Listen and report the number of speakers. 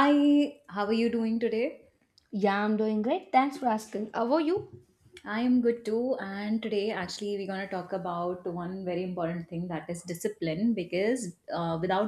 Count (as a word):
two